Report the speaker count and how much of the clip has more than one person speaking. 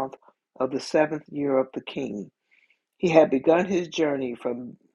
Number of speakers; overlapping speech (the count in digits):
1, no overlap